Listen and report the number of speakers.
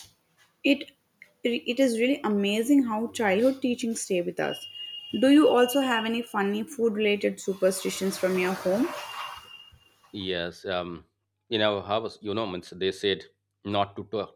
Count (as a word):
two